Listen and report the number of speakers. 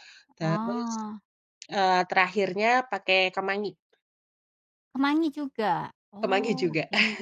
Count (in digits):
2